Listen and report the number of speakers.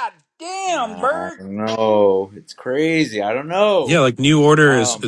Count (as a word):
three